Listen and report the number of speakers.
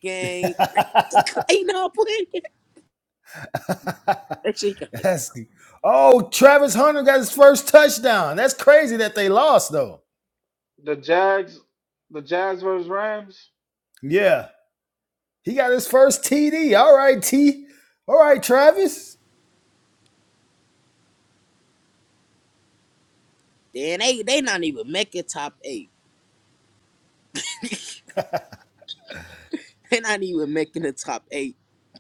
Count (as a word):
three